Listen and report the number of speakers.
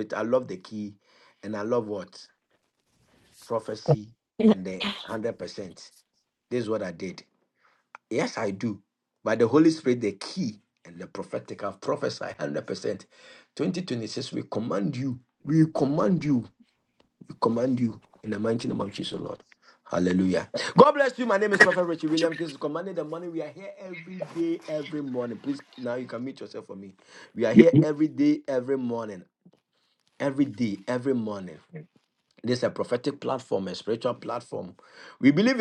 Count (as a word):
one